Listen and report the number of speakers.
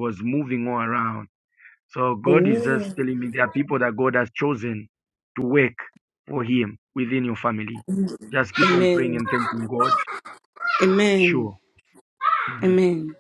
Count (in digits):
2